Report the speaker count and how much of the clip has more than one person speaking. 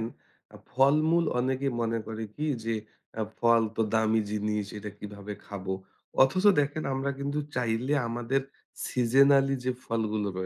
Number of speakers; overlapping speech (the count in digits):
1, no overlap